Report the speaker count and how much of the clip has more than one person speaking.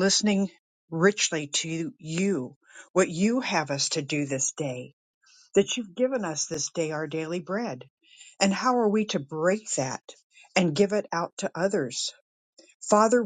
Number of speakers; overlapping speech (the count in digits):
1, no overlap